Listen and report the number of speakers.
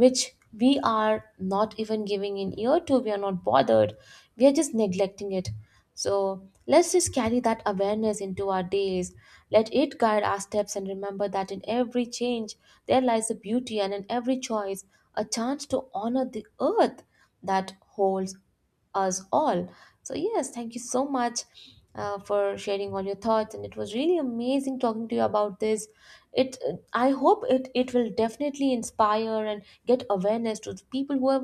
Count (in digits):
1